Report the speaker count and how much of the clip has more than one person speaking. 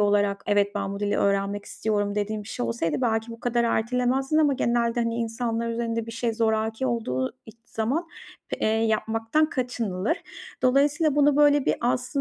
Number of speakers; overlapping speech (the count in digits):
1, no overlap